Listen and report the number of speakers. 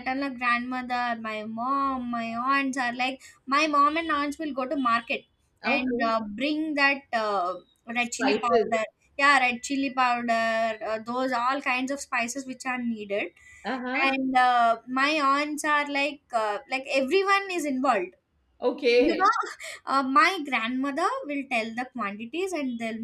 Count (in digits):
2